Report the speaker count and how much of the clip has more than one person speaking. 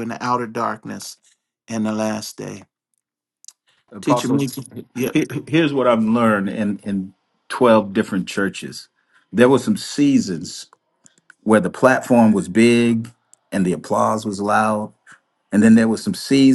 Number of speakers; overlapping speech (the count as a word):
two, about 2%